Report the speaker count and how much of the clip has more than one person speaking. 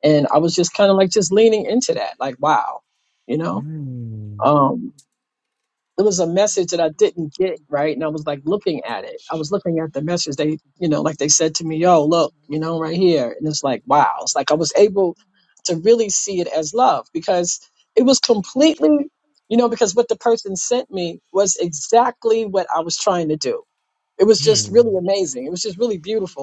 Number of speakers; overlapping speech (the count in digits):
2, about 1%